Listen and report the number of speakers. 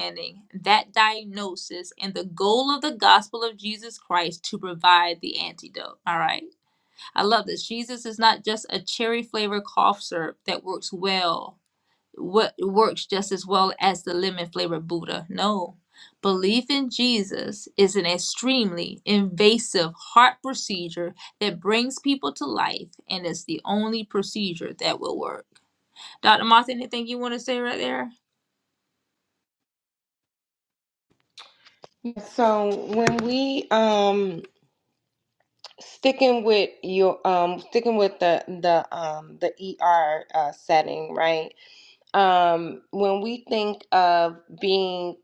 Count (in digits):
2